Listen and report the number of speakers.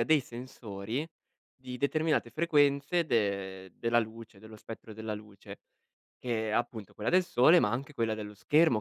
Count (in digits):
1